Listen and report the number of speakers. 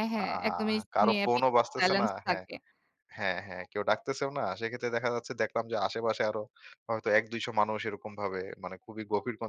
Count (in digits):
2